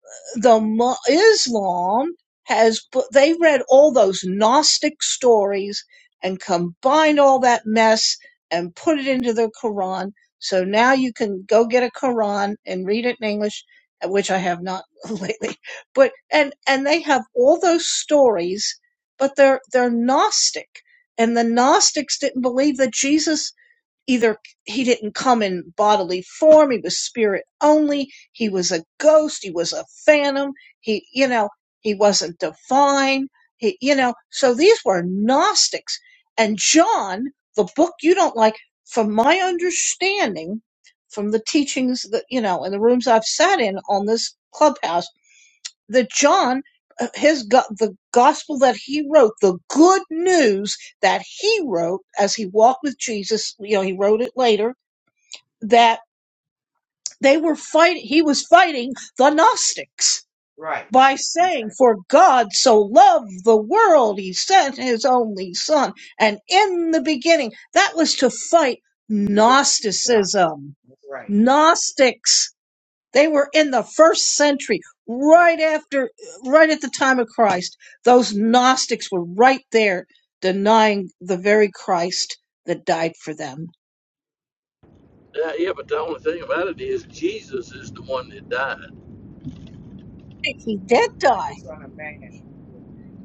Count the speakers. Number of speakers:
3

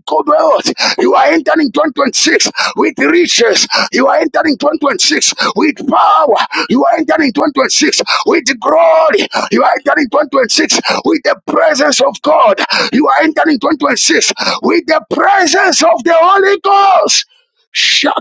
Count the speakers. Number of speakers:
1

